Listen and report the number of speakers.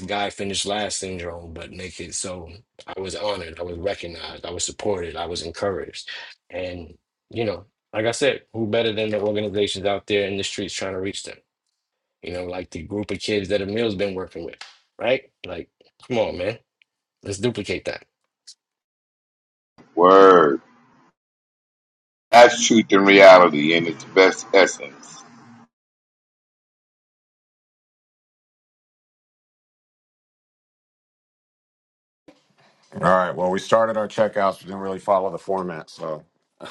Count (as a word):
three